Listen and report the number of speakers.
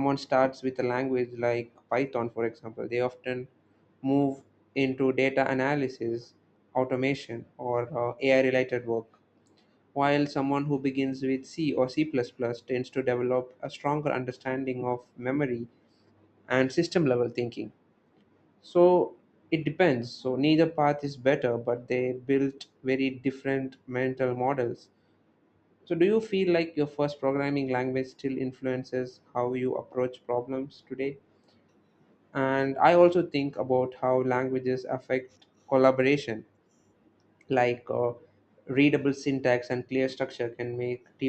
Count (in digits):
1